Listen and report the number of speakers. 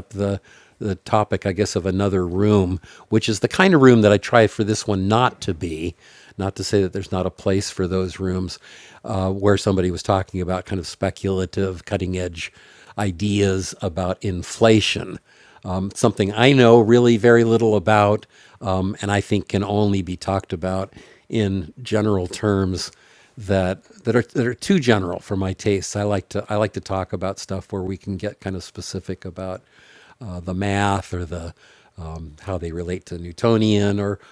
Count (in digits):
1